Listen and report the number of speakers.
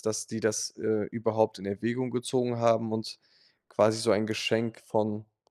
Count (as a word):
one